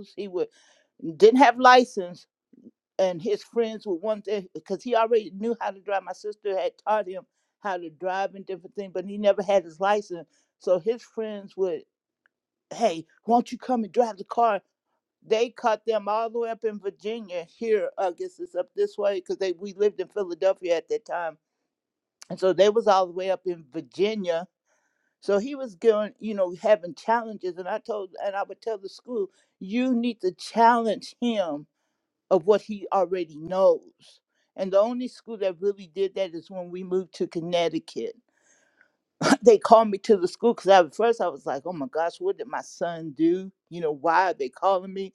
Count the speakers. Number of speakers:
one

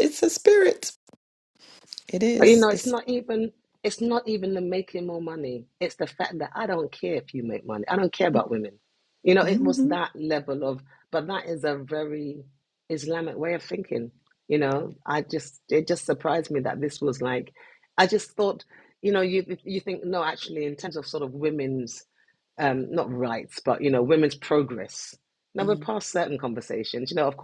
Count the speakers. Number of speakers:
two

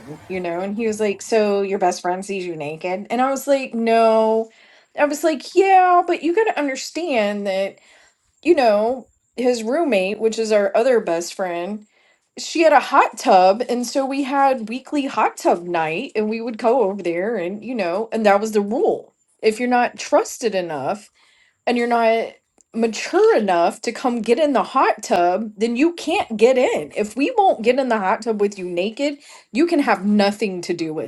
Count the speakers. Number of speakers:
one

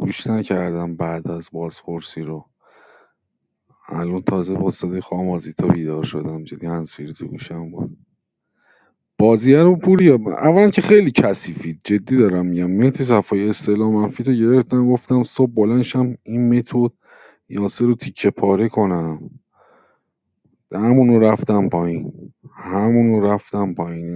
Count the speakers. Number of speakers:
one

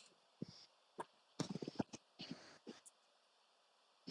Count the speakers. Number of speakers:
zero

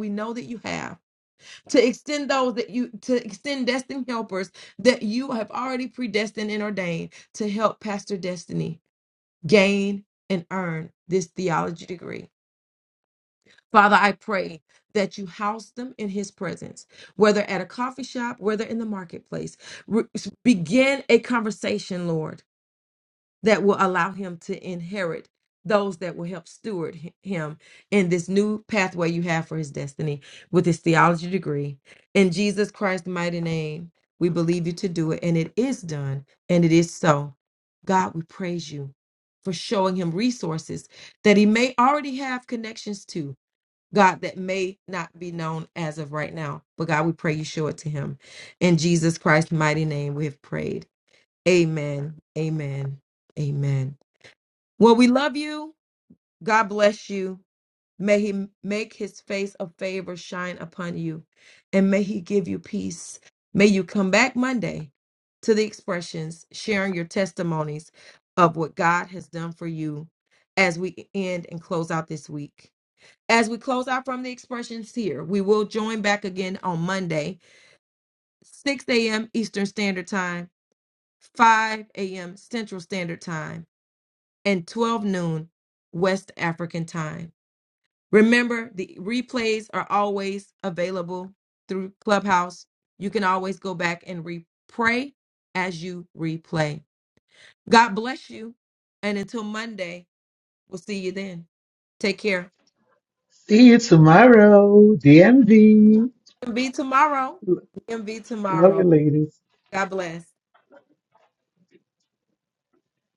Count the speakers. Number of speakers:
two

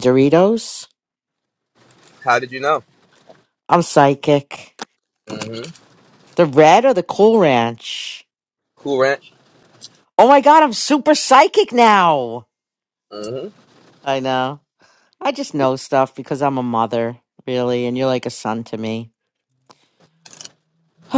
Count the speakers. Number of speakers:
two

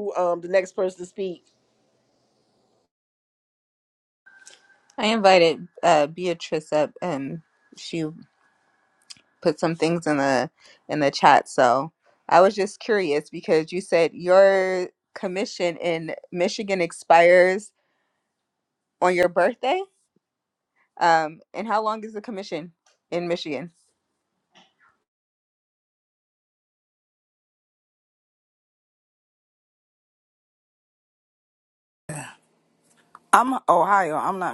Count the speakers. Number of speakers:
three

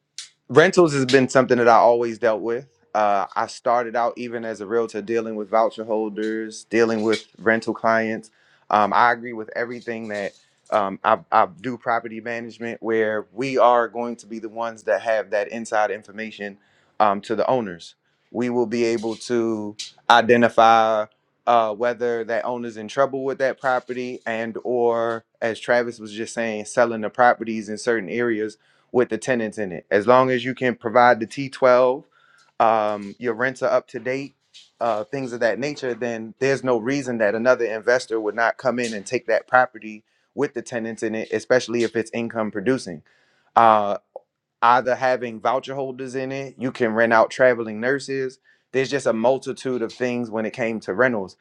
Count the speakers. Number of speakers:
one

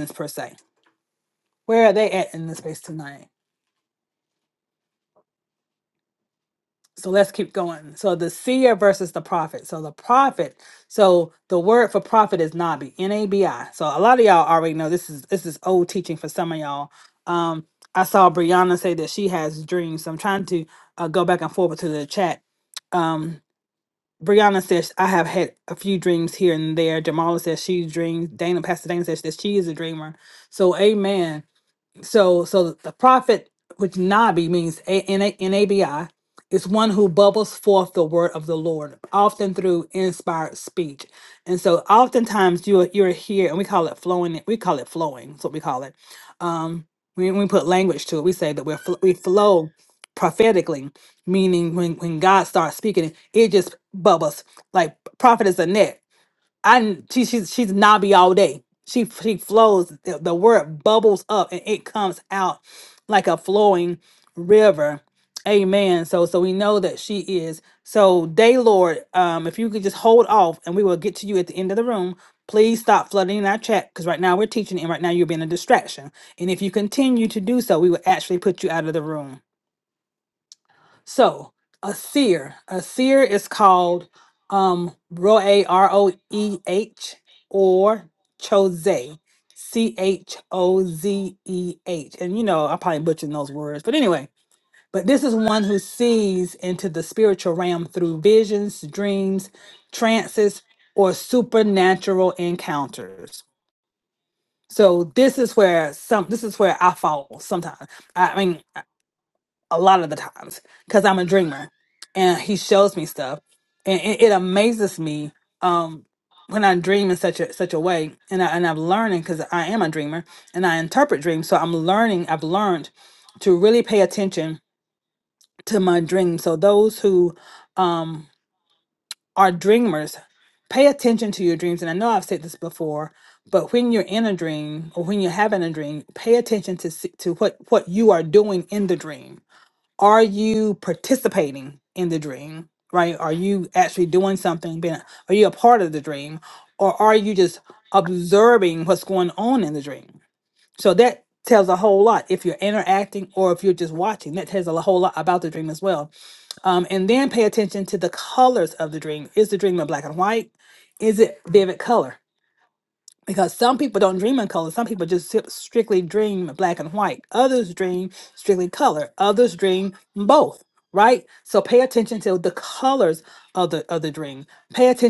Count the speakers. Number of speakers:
one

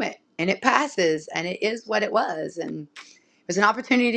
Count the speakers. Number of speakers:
one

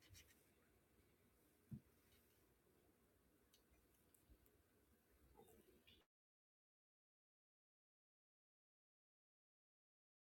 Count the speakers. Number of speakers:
zero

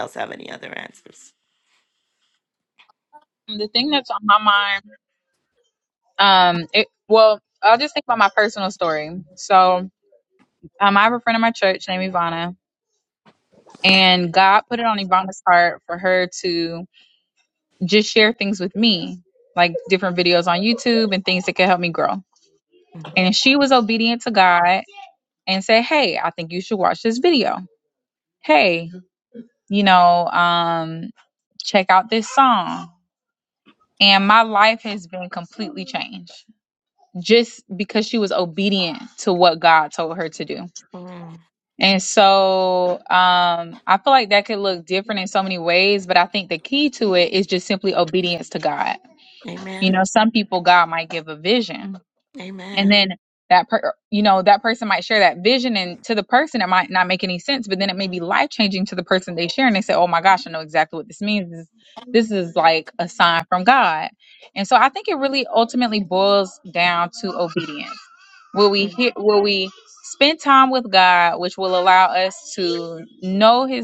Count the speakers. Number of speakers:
two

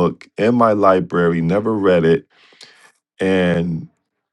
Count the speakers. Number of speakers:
one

